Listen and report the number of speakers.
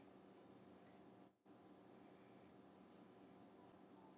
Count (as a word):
zero